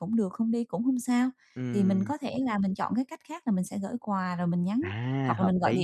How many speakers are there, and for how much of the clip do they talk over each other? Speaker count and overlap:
2, about 18%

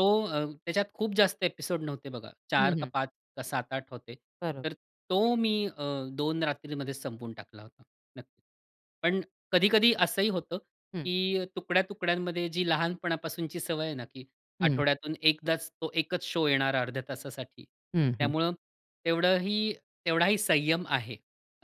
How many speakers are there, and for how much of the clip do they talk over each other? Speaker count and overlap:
2, about 3%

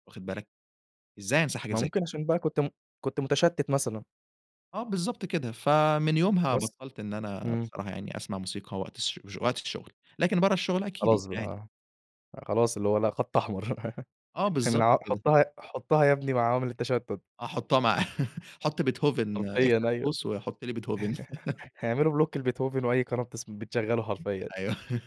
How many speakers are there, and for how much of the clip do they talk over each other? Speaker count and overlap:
2, about 10%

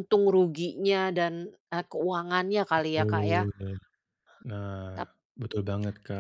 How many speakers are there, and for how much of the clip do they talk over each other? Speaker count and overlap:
2, about 11%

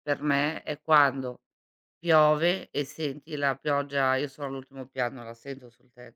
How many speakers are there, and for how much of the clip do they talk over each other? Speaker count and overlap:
1, no overlap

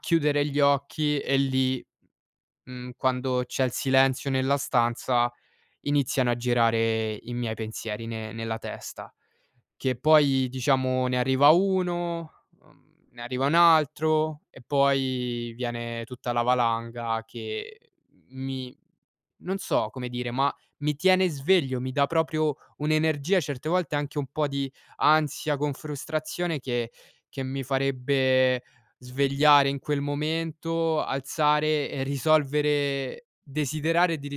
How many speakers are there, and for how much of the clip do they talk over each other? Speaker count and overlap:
1, no overlap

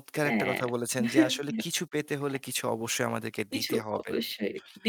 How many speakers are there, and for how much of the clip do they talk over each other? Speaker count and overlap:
2, about 22%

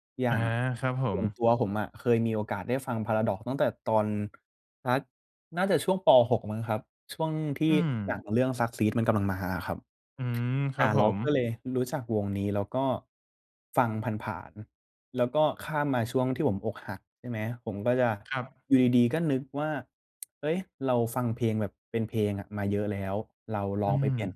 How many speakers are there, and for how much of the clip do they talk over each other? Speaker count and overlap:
2, about 5%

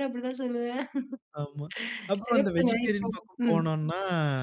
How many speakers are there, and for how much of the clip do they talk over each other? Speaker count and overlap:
2, about 23%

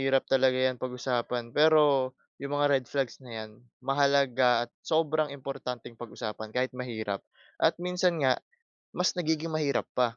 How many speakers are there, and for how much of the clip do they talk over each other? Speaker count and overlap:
1, no overlap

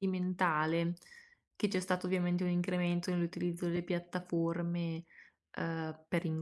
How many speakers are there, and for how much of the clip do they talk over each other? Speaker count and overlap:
1, no overlap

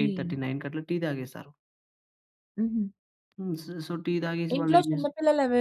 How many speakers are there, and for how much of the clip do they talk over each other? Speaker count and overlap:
2, about 16%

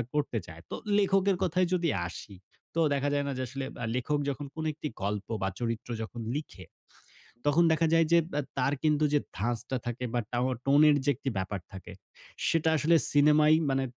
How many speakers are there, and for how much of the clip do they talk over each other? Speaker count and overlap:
1, no overlap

